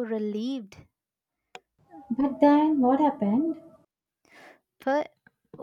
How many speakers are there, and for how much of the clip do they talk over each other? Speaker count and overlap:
2, no overlap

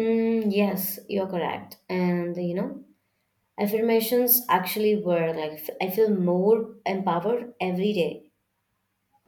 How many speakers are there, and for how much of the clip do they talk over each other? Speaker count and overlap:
1, no overlap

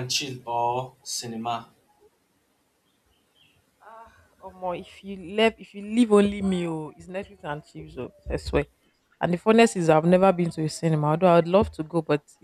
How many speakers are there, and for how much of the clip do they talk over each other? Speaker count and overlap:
2, no overlap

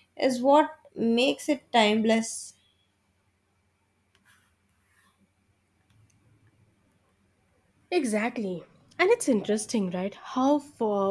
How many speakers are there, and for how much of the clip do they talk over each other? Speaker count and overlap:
2, no overlap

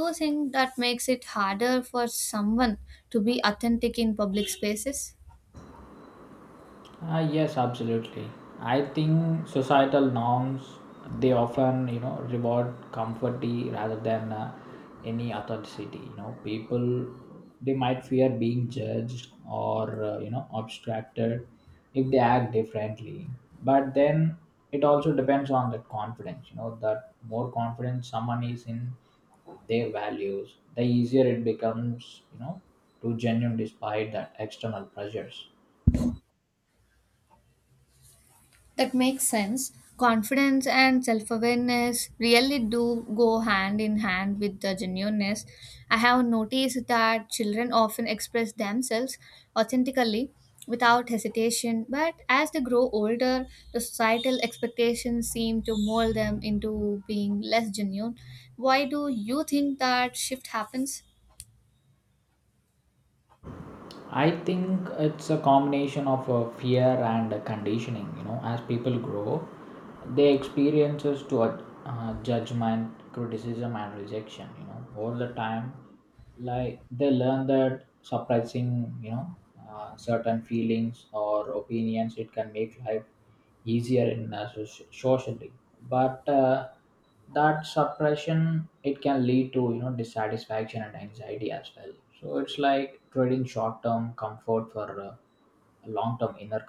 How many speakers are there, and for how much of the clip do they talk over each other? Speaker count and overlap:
2, no overlap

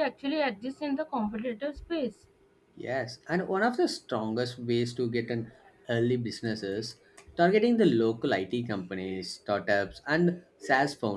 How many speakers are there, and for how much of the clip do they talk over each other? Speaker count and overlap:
2, no overlap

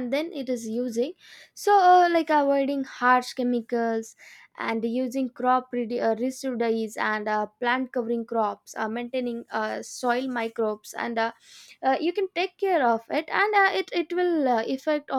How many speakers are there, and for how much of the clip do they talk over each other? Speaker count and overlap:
1, no overlap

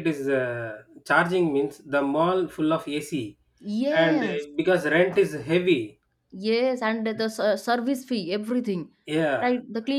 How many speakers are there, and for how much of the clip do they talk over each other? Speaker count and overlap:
2, about 7%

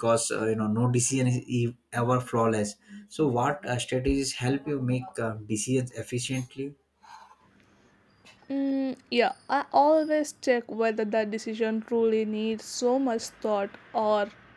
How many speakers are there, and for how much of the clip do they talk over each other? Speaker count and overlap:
2, no overlap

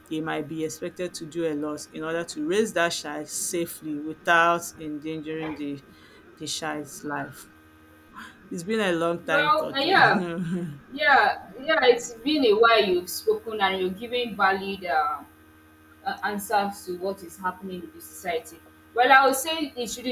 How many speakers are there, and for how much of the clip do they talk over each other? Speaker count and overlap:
2, about 4%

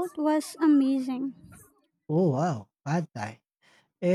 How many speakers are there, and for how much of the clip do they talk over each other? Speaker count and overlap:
2, no overlap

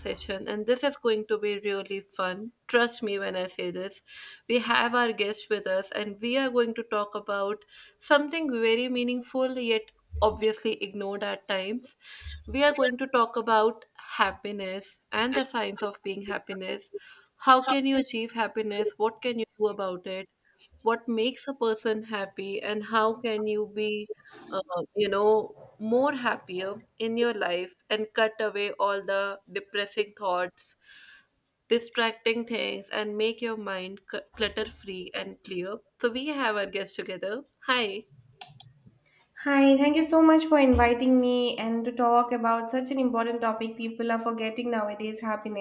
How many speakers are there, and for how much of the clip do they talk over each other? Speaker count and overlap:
2, no overlap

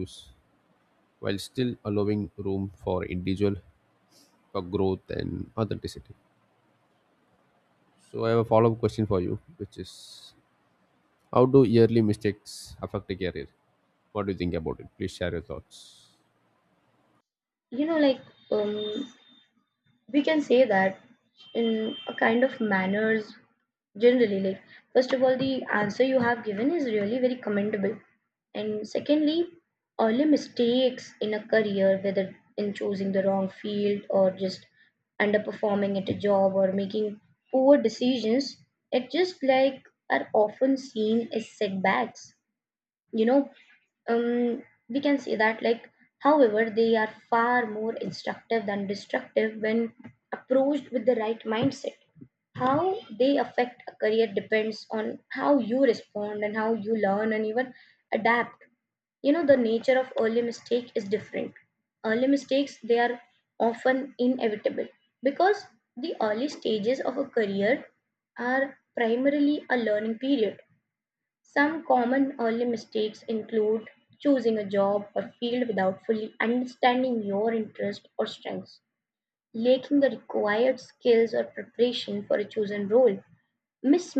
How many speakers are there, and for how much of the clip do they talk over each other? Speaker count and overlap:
2, no overlap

